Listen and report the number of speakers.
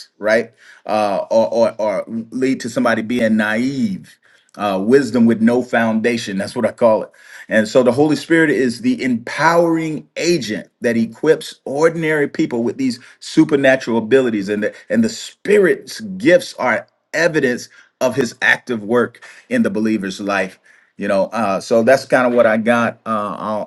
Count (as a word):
one